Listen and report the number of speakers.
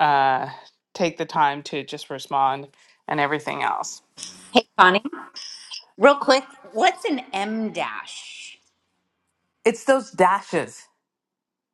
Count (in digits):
2